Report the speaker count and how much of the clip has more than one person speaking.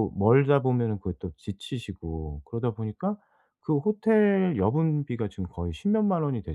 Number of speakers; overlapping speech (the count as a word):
one, no overlap